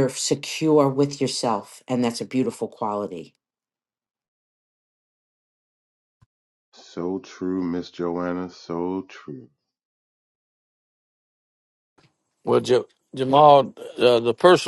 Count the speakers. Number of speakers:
three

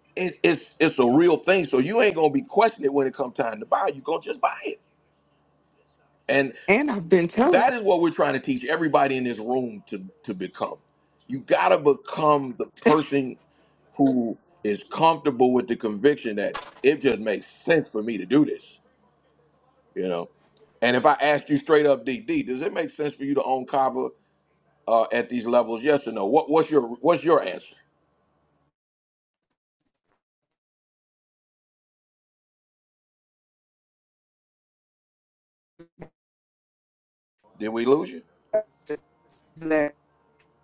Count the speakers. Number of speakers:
two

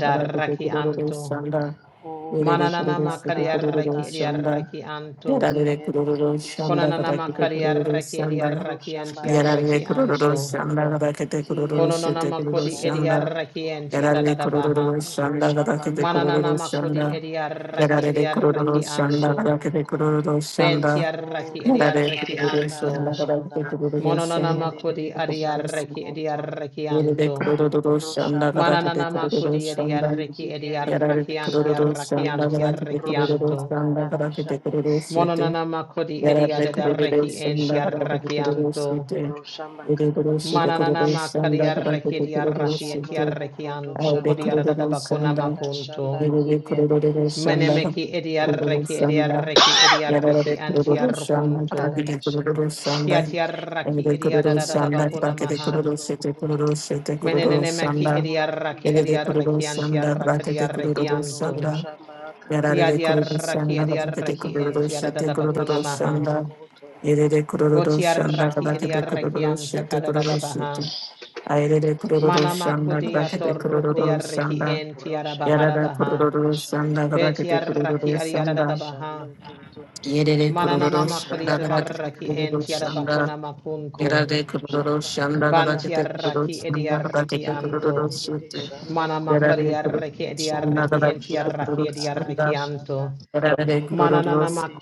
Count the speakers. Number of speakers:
three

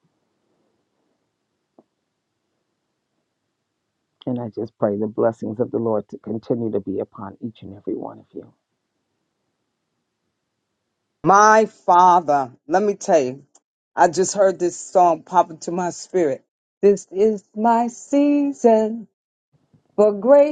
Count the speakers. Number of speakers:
two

